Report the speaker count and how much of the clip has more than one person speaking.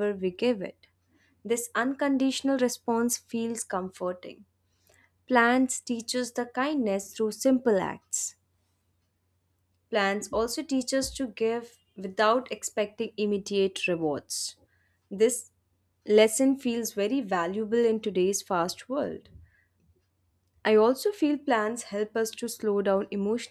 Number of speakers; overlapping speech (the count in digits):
1, no overlap